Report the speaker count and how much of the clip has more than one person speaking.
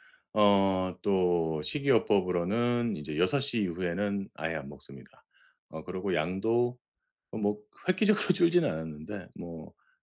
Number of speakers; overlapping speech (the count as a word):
one, no overlap